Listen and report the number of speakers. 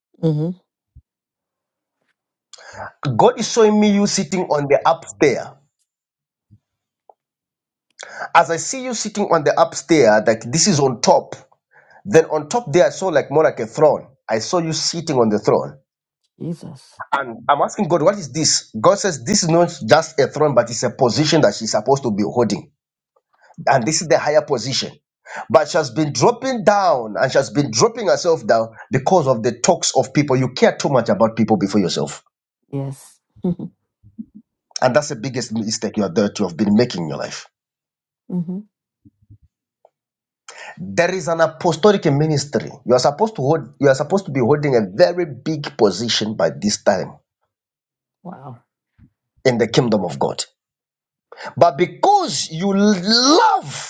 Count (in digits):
2